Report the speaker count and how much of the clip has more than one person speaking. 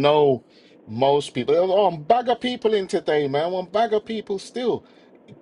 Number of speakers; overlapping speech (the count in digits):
1, no overlap